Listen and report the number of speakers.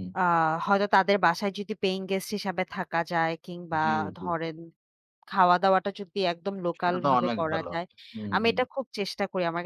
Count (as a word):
two